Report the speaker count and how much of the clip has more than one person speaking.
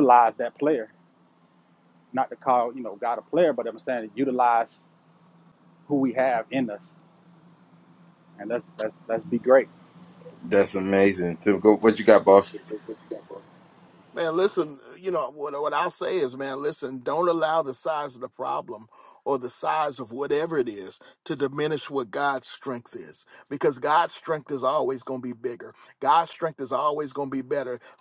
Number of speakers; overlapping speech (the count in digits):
3, under 1%